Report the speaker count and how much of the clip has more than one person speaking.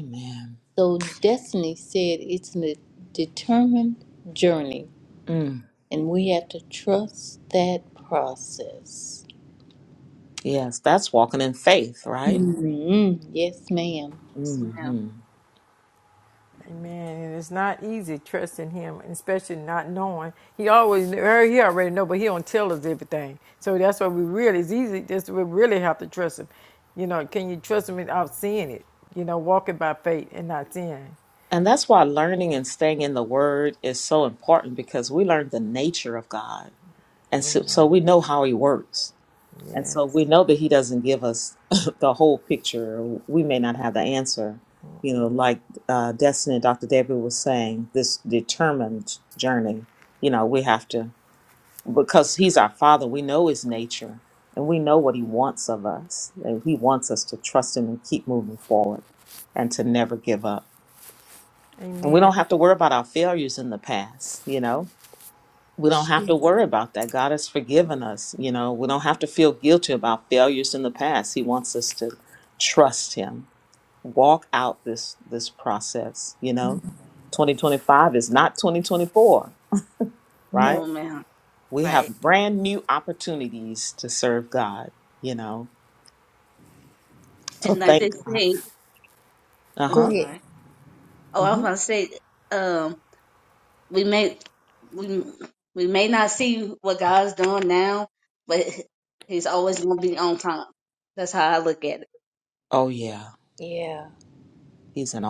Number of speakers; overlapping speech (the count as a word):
four, about 3%